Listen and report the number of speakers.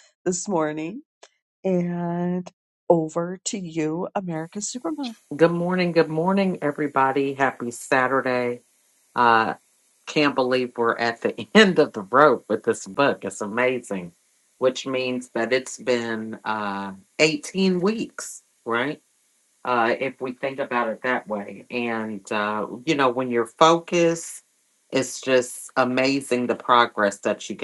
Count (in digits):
2